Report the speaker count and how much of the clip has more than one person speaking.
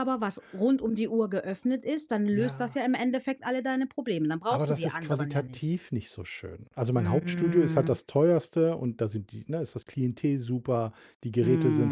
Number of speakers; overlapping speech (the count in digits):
2, about 26%